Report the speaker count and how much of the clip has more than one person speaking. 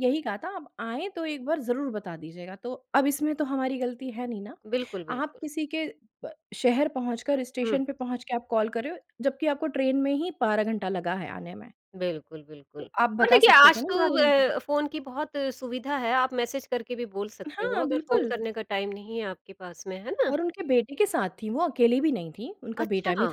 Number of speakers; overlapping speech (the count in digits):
2, about 14%